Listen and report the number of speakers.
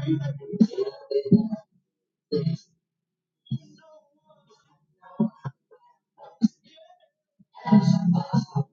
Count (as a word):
zero